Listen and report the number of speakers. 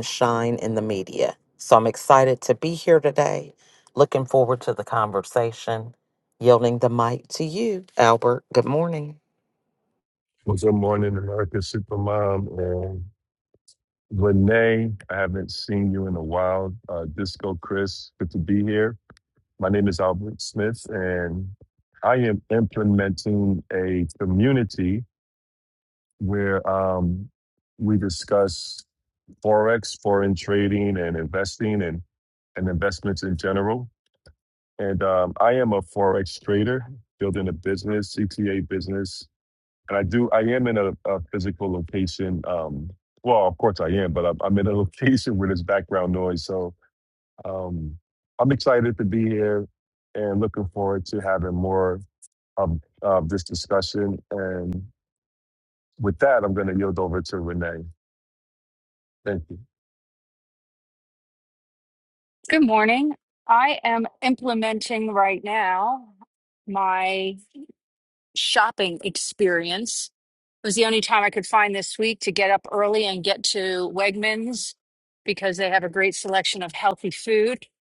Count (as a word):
three